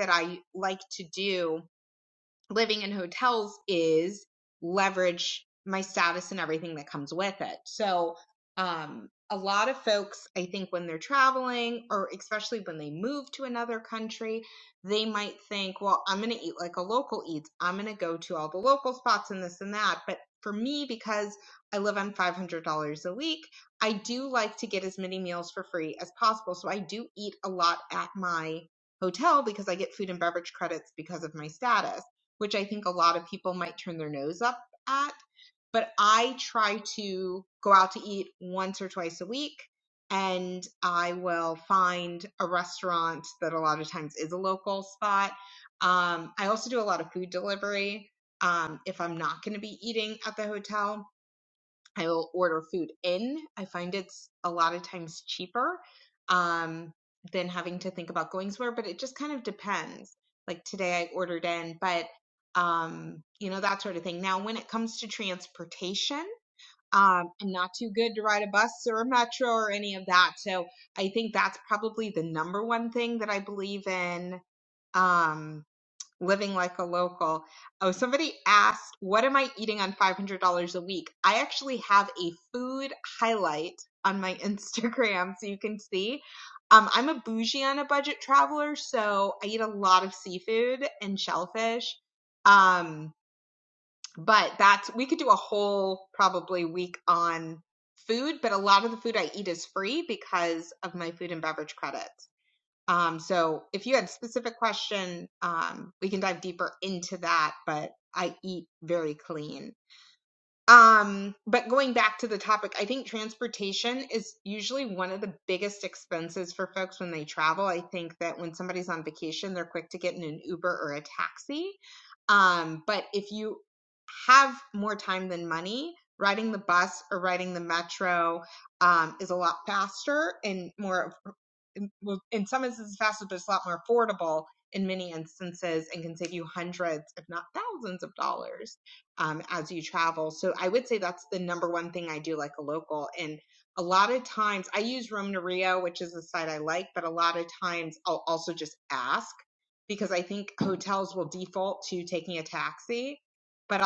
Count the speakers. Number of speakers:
one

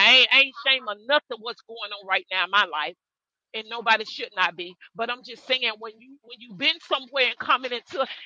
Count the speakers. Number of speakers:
one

